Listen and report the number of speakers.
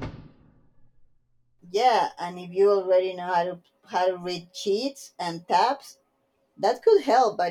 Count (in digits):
1